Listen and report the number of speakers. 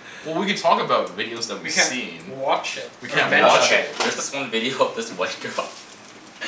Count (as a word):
three